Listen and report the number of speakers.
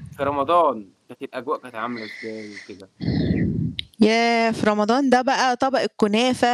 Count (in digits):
2